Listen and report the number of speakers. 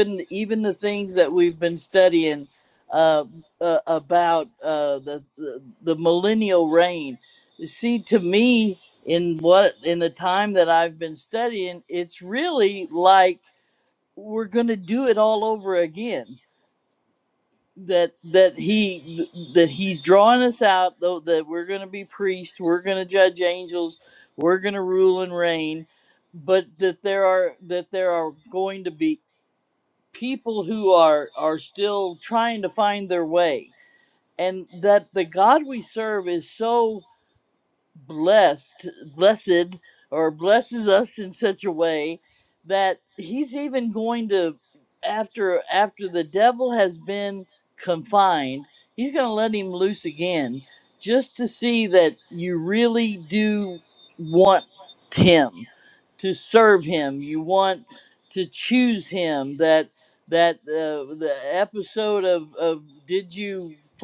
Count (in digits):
1